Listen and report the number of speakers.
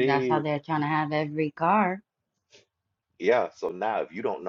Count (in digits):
2